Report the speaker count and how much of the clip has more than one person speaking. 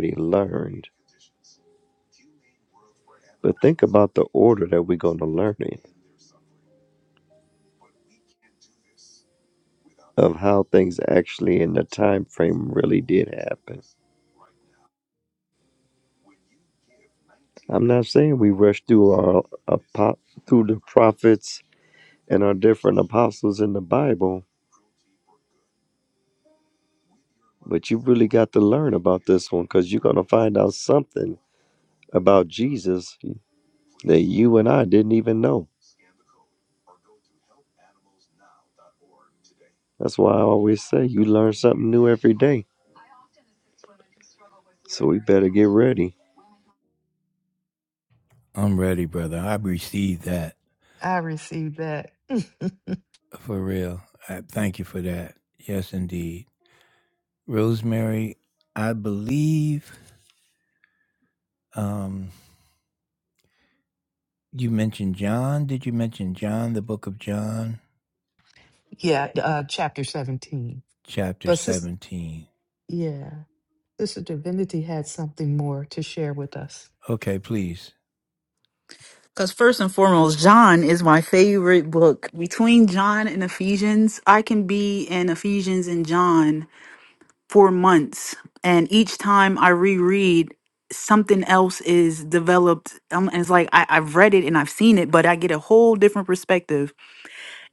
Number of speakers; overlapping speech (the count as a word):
four, under 1%